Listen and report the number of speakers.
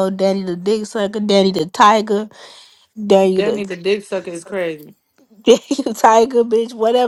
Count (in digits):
2